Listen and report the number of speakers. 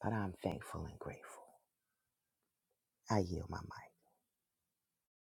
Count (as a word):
one